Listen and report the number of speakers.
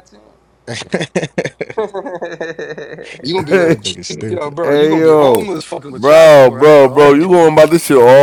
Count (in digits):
4